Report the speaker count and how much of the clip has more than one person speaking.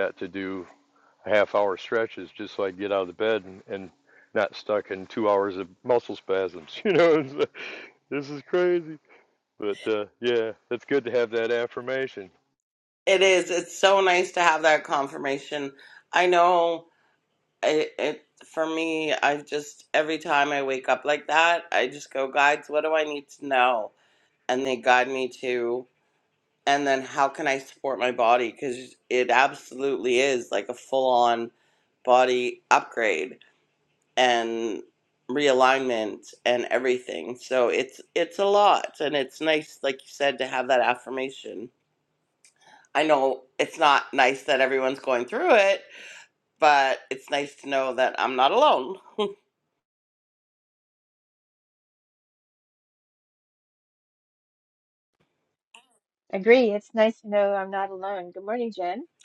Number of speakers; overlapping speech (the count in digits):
3, no overlap